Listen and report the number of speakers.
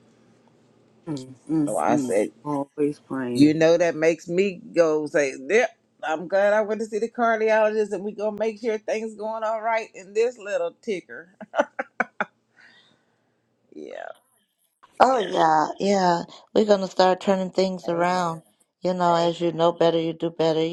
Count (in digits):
3